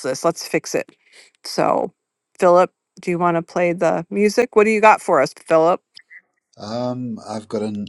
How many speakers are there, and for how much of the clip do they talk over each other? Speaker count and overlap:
2, no overlap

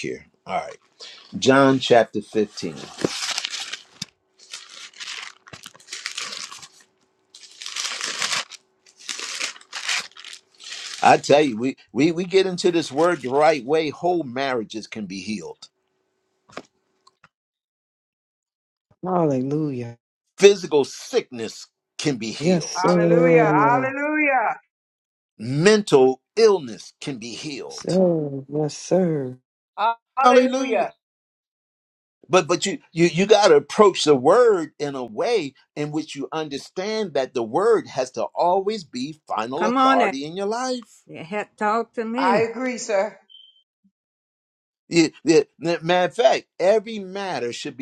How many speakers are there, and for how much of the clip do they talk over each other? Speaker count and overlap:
4, about 6%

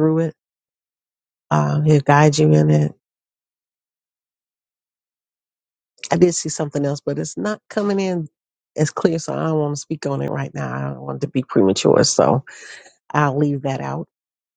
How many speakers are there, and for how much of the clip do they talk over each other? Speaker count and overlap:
1, no overlap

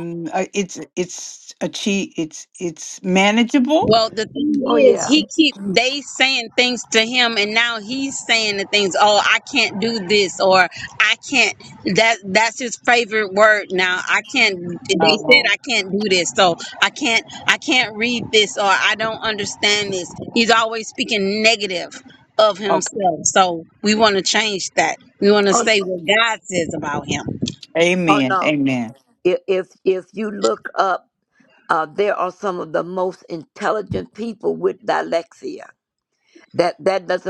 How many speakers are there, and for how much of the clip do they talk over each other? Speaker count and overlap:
3, about 5%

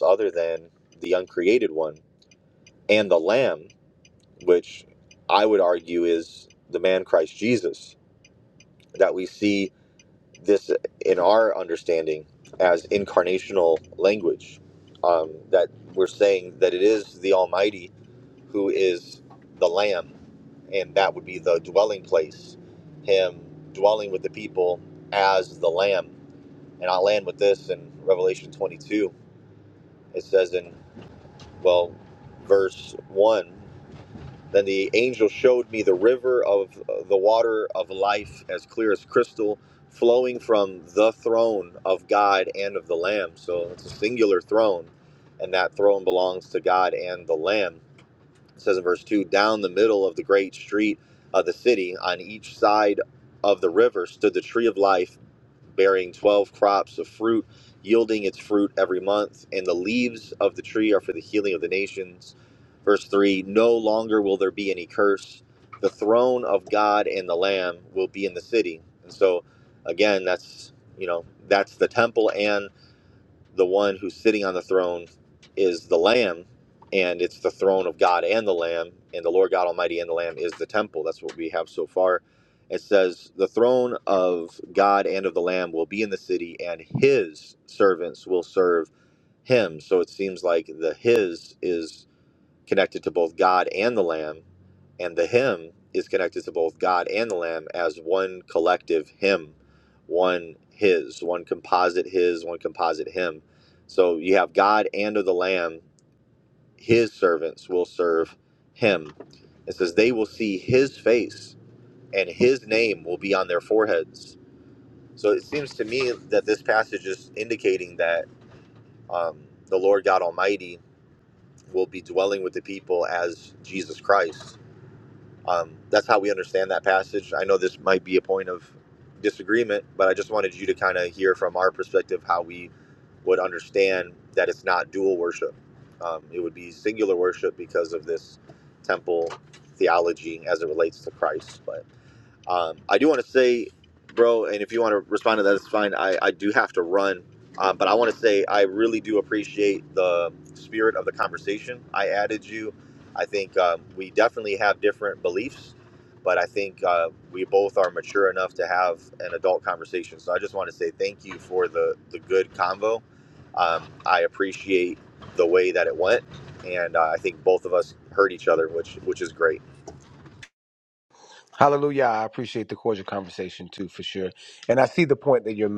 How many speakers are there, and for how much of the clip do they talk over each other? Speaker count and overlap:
2, no overlap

